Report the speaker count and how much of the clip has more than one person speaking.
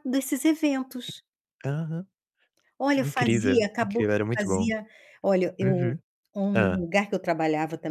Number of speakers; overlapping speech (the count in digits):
2, about 28%